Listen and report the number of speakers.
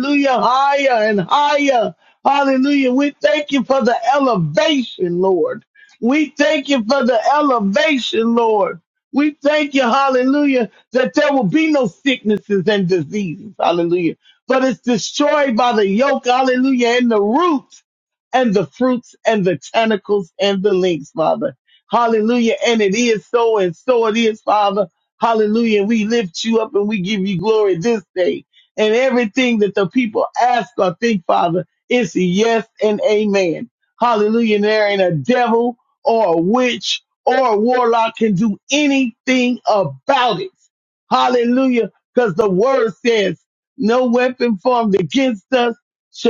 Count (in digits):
1